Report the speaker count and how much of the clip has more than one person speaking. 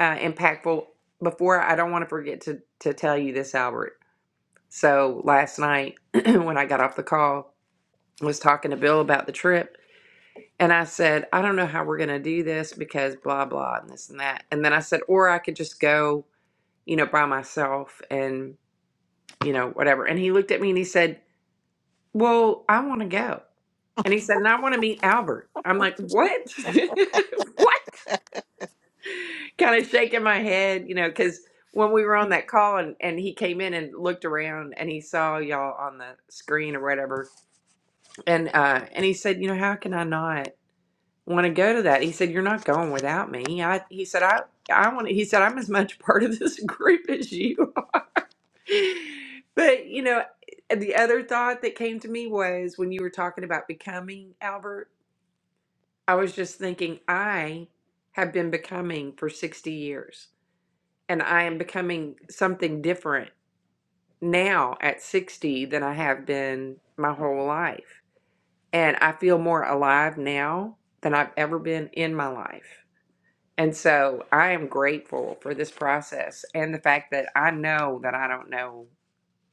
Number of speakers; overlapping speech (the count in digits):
1, no overlap